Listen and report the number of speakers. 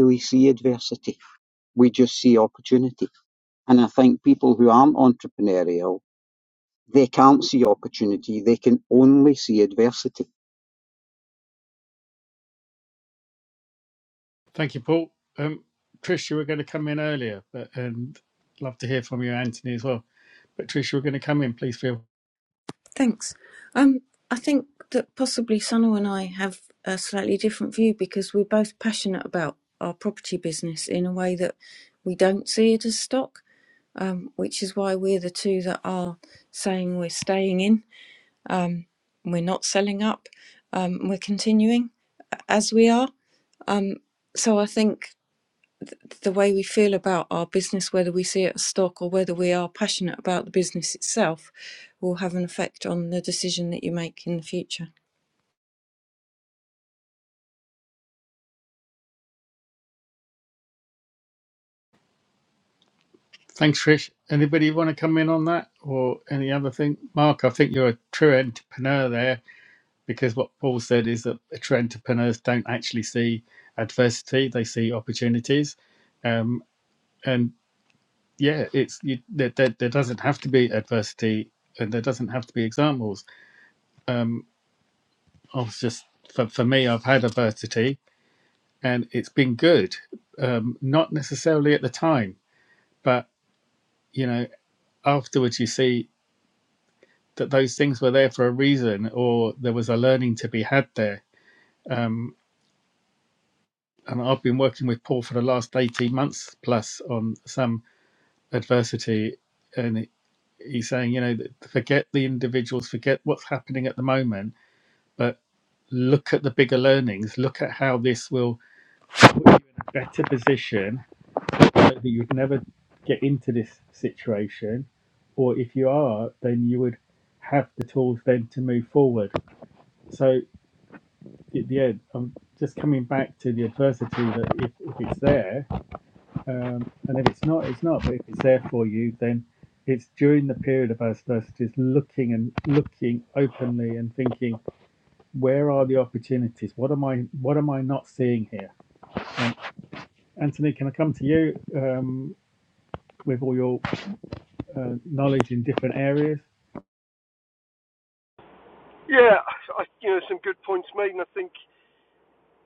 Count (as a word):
four